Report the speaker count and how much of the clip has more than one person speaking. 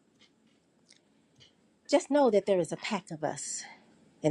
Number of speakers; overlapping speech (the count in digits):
1, no overlap